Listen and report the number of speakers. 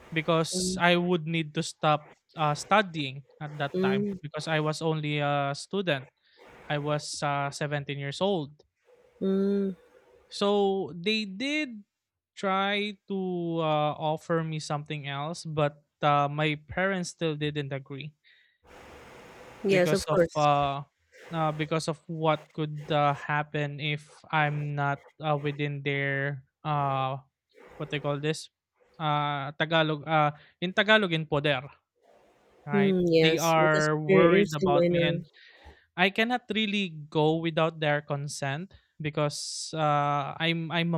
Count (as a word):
two